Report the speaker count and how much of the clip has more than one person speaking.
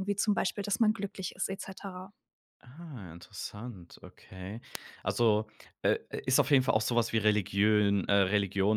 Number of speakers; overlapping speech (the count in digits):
2, no overlap